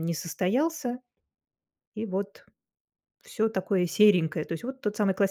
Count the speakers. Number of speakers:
one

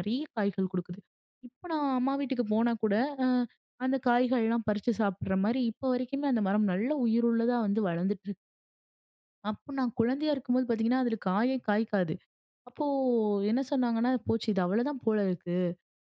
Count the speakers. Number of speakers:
one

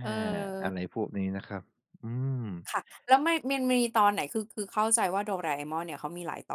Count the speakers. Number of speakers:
two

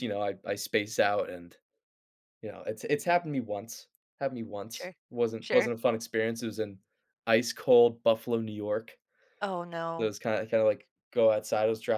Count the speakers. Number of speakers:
two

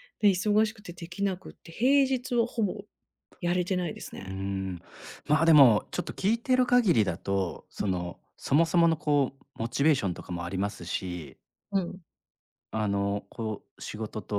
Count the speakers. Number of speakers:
two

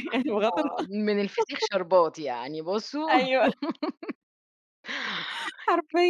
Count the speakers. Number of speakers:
two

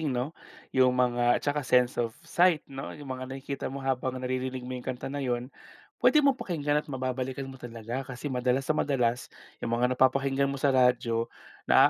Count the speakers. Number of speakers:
one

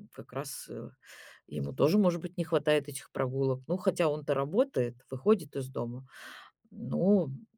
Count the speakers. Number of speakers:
one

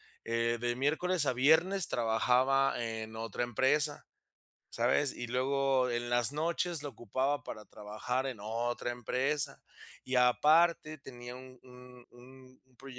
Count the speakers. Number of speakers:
one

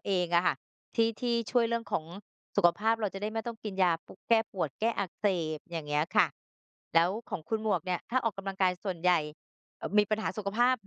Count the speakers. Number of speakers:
one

